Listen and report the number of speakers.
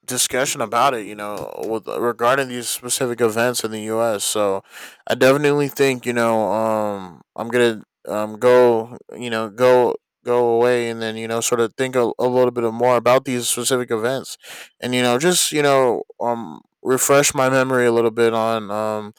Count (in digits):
1